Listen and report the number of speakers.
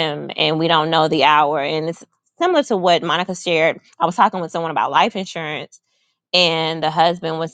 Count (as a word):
one